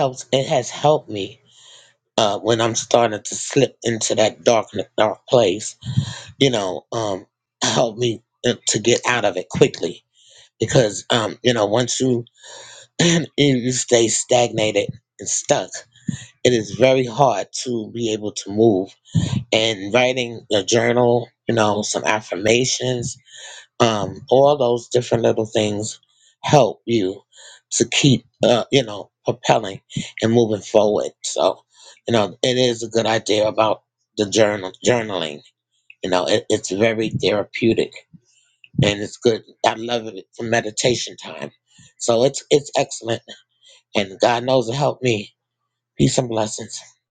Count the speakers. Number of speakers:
1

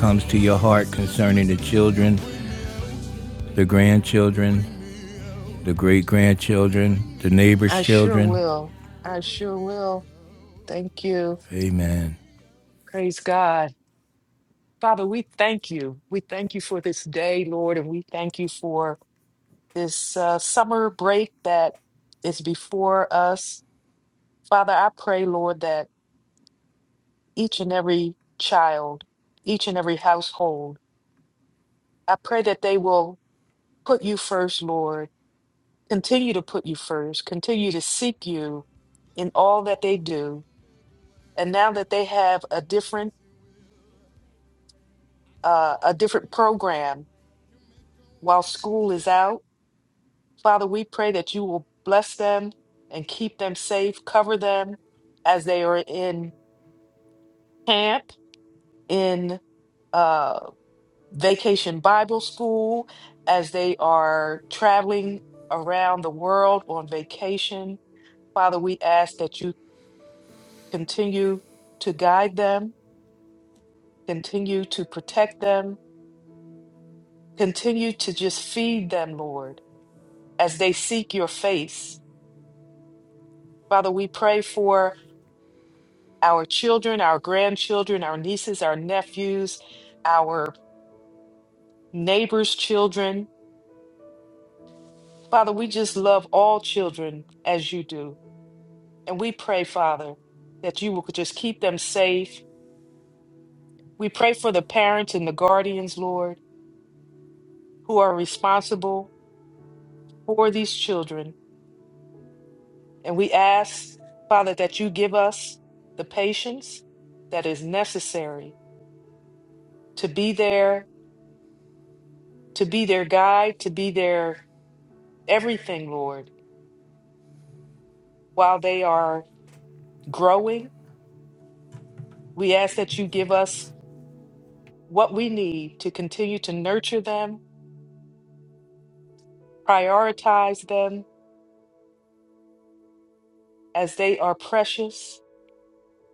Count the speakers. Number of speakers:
2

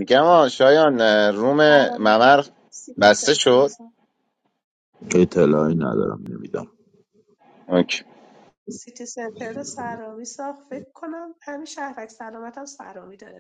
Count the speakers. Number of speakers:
3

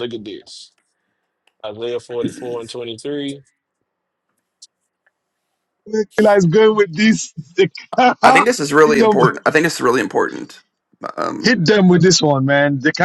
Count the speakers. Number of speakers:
3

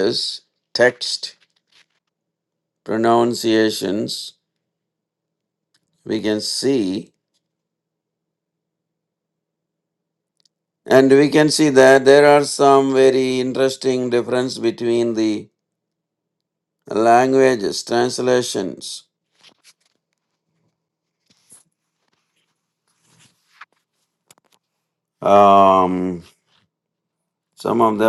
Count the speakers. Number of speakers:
1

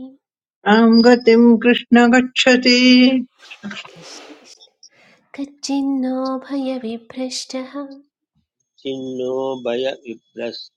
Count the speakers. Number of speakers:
3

